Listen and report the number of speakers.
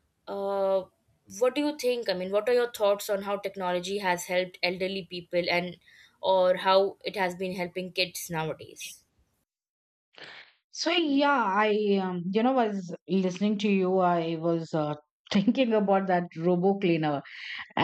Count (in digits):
2